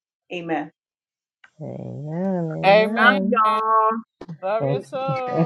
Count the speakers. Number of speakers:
3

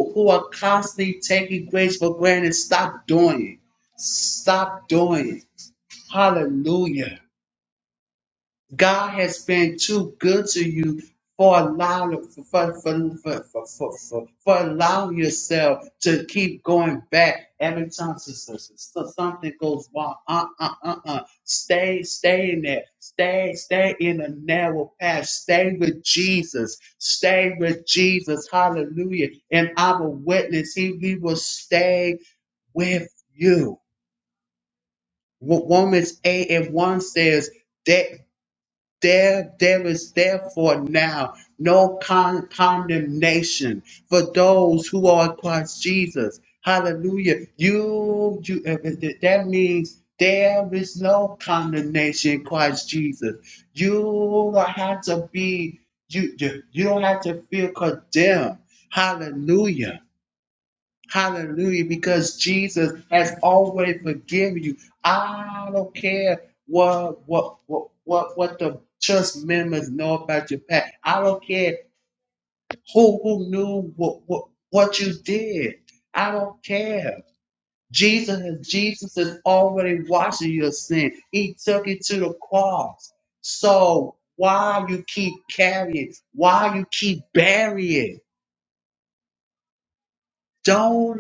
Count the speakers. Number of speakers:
1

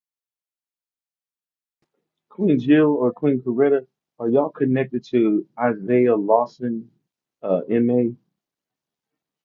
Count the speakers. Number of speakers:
1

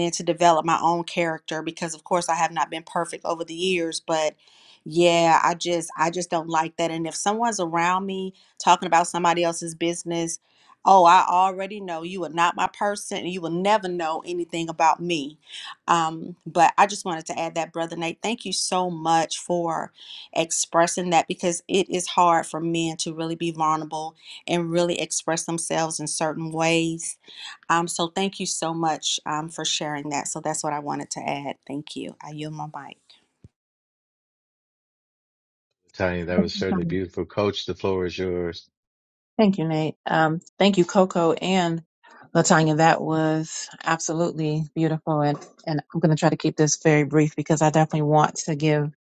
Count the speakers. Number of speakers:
3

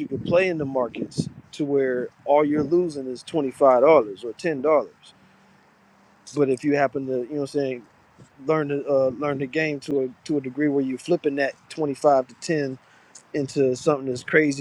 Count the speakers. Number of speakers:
1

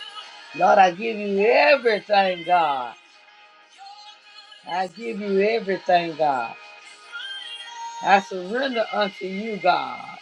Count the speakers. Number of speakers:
1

